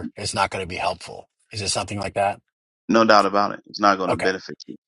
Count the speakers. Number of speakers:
2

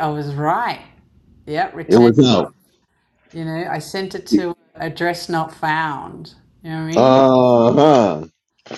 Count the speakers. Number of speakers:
2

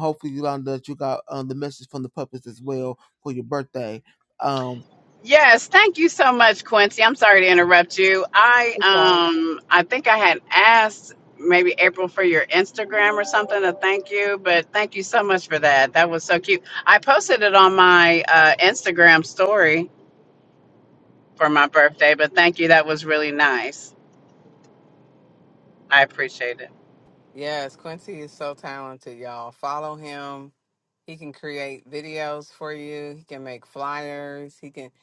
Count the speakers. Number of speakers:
3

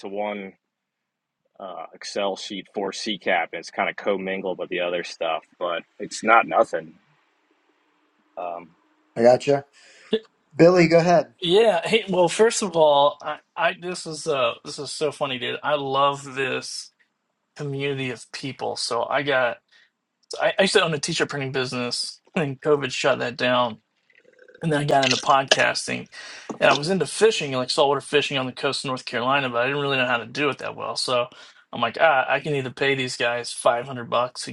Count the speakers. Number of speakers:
3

